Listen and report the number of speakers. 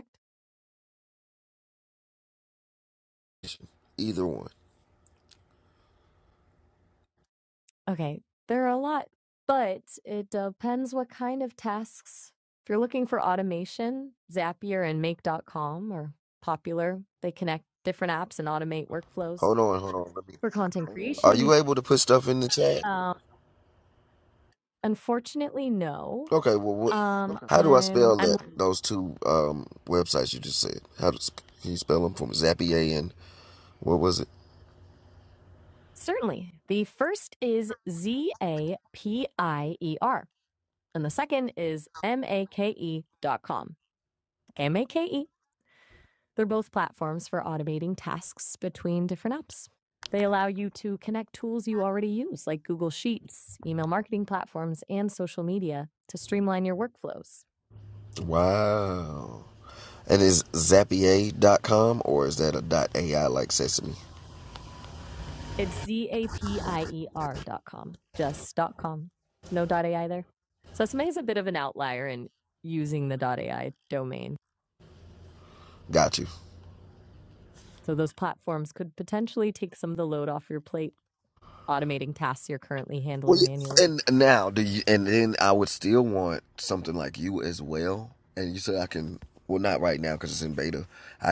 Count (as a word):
two